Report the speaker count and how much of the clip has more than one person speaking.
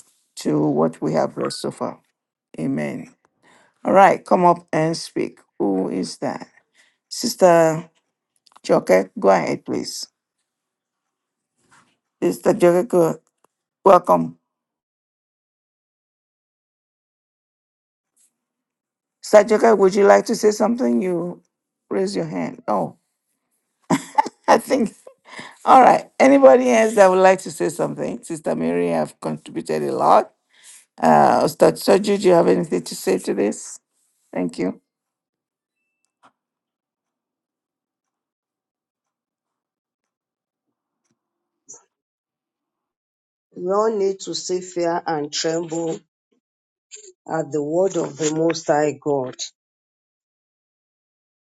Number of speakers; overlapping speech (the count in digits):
2, no overlap